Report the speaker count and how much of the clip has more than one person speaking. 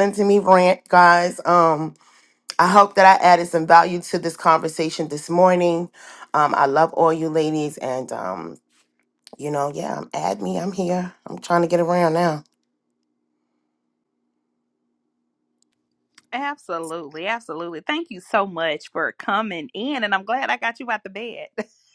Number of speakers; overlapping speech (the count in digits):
2, no overlap